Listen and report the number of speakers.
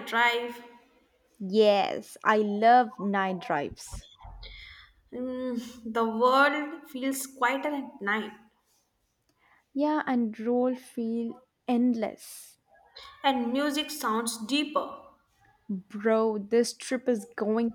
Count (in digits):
2